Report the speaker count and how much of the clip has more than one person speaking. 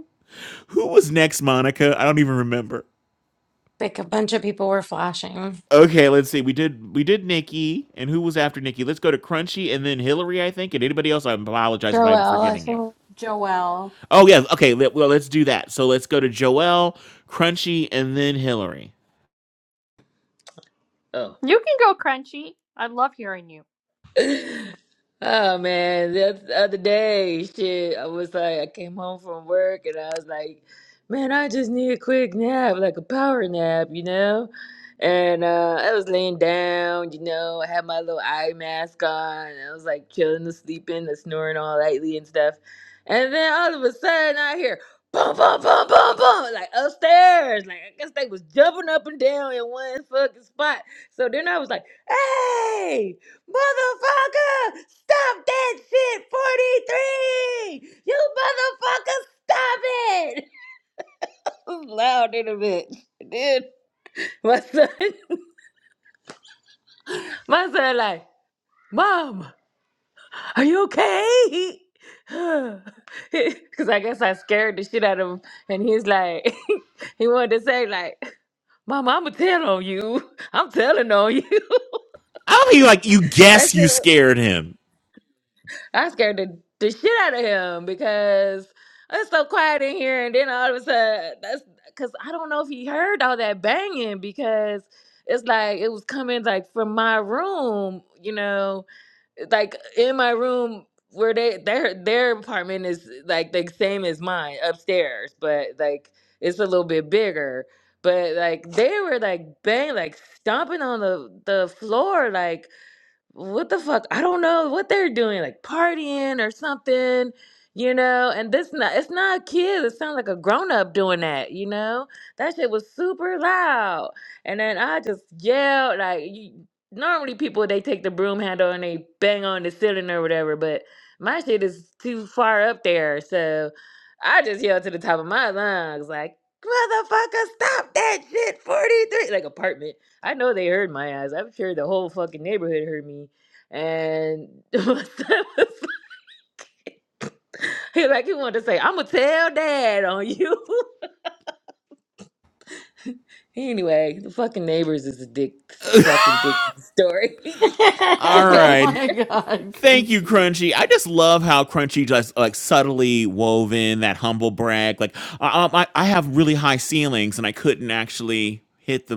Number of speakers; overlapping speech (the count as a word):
five, about 2%